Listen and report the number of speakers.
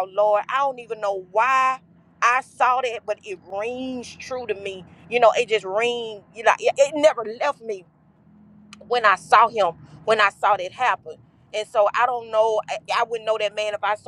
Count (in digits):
1